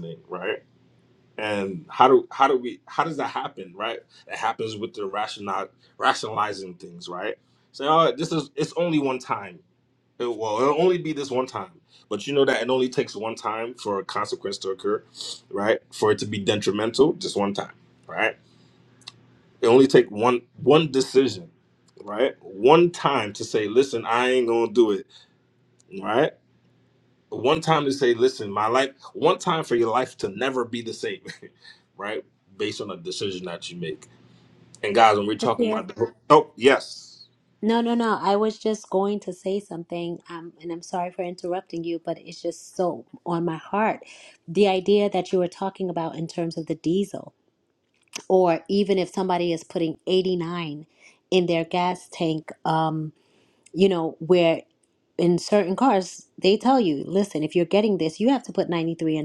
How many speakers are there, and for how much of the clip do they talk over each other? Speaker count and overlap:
2, about 1%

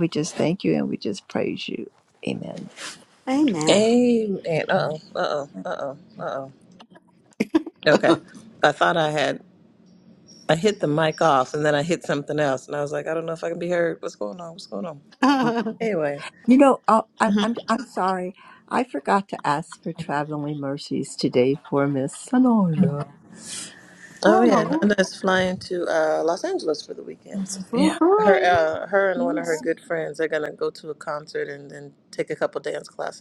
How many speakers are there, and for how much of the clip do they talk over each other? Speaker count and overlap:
3, about 4%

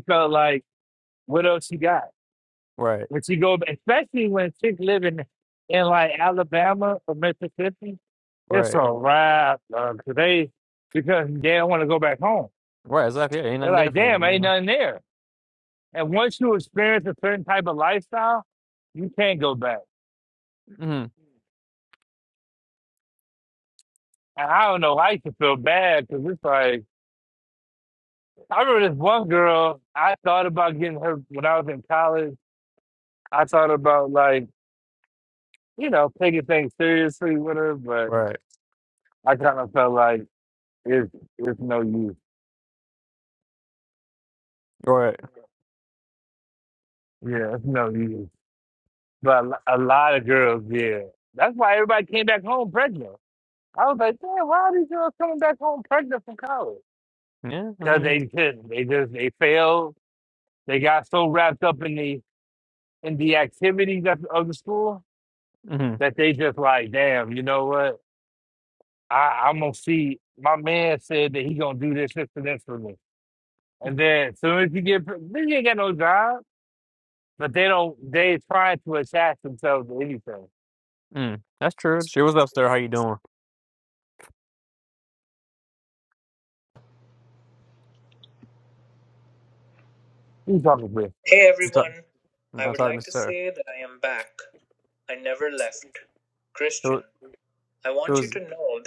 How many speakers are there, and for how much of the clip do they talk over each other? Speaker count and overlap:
3, about 3%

